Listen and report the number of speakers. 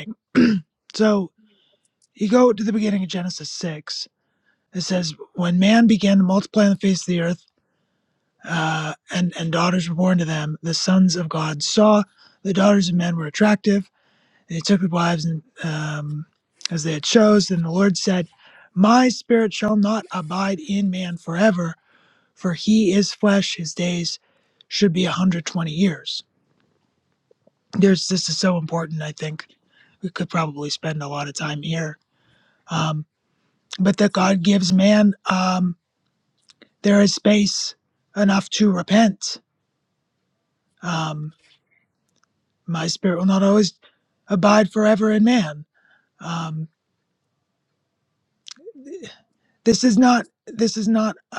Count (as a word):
one